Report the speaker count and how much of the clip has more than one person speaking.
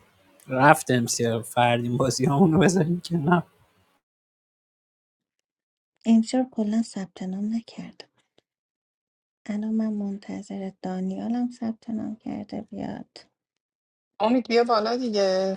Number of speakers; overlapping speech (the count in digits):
3, no overlap